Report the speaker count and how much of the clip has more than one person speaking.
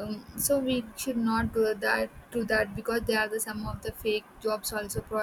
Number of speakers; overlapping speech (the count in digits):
1, no overlap